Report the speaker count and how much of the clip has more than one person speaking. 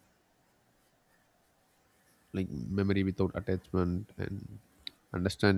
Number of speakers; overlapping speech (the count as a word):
one, no overlap